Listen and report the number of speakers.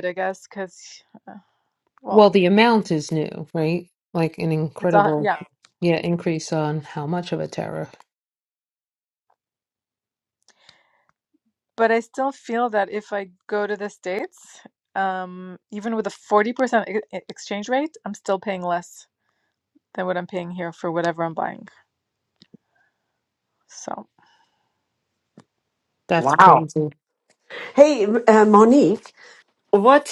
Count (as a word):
three